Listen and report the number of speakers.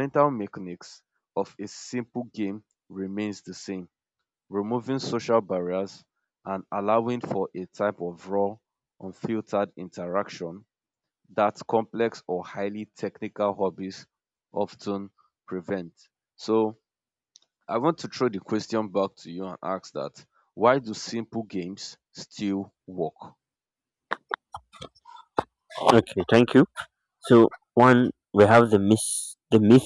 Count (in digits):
2